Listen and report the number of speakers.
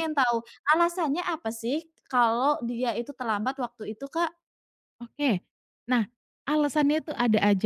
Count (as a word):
two